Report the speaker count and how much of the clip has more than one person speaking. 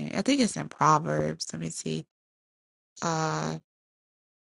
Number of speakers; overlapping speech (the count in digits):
1, no overlap